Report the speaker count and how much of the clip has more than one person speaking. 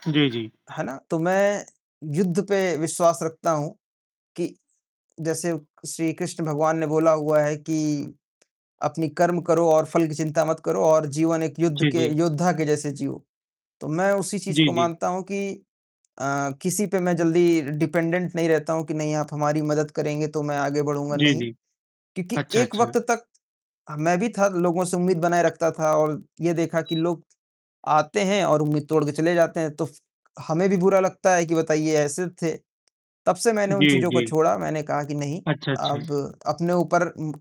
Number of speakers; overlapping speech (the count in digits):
2, about 7%